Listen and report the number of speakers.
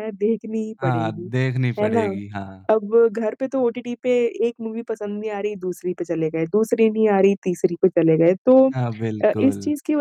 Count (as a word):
two